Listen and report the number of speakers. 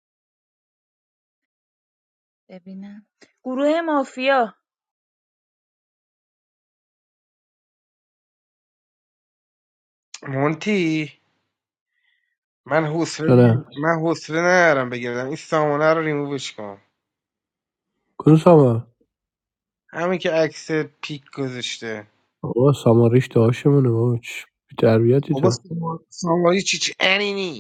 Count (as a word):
three